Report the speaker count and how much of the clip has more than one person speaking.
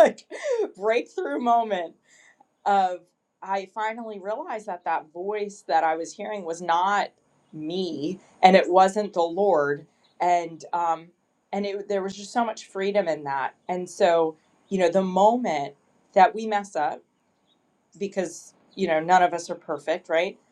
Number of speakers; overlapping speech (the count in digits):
1, no overlap